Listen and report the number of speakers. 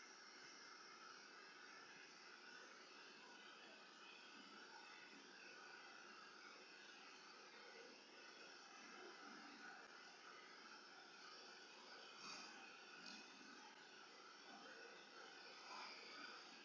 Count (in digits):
0